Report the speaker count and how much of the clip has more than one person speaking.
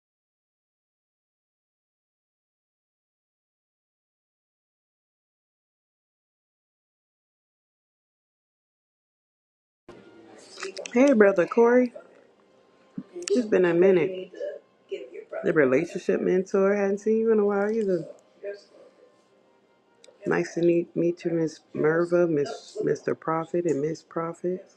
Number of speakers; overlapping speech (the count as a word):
one, no overlap